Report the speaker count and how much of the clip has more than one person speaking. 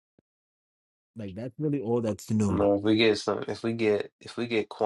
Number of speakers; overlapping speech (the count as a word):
two, about 3%